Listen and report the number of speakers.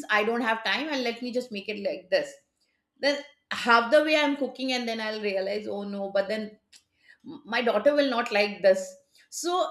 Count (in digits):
1